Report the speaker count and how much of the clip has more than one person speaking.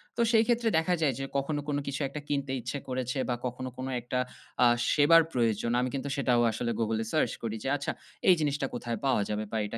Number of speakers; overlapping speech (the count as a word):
one, no overlap